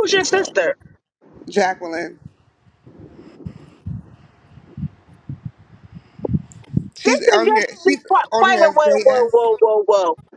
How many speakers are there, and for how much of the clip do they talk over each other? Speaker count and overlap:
two, about 26%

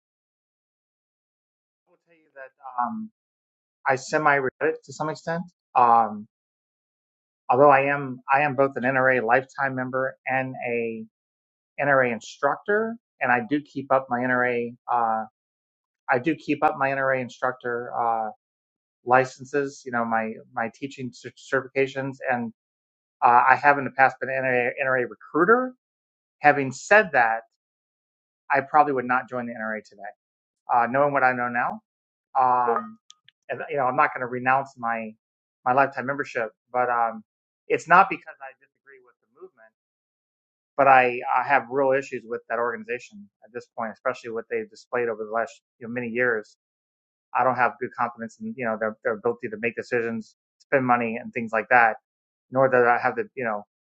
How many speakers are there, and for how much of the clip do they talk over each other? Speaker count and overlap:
one, no overlap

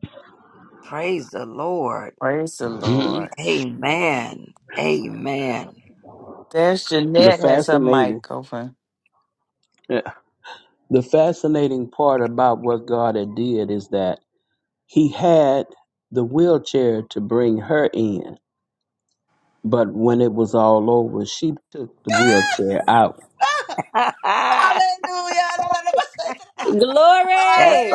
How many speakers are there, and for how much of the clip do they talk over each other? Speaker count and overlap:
five, about 8%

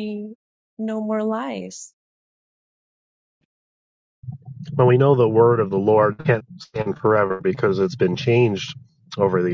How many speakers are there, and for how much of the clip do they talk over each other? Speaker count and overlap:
two, no overlap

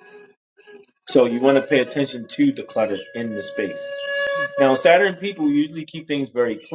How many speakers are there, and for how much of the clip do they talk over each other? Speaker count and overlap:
one, no overlap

